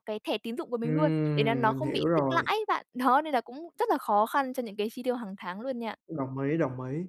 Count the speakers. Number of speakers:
2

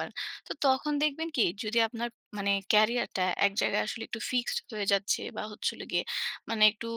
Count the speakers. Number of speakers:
1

